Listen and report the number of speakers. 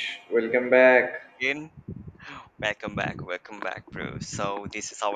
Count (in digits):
2